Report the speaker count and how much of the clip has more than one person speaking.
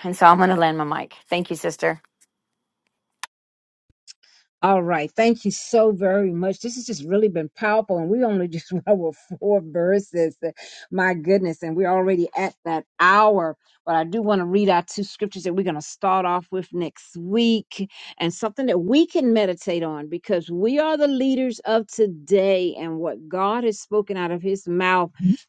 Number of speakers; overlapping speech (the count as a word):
two, no overlap